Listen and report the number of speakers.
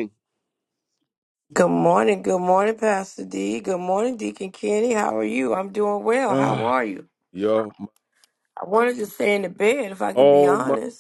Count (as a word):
two